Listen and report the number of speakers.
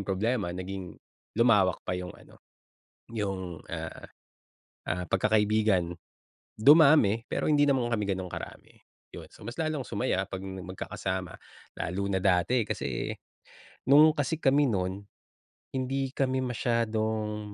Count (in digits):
1